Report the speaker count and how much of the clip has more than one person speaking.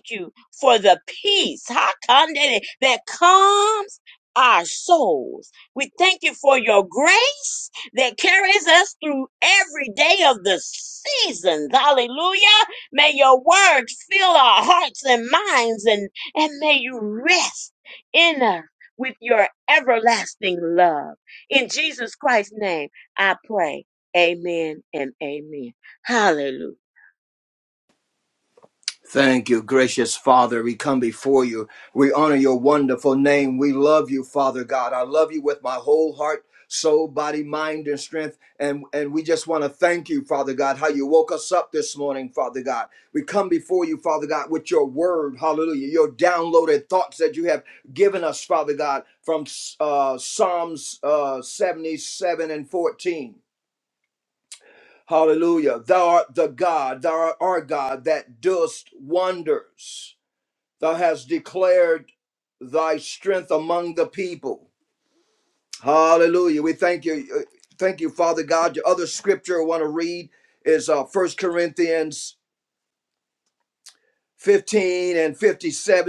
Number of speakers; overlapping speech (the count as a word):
two, no overlap